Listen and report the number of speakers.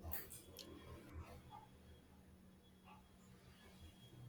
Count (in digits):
0